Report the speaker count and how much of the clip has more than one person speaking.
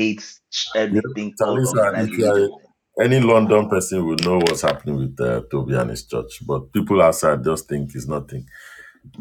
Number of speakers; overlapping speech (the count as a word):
two, about 13%